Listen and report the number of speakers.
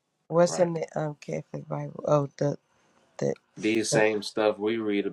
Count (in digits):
2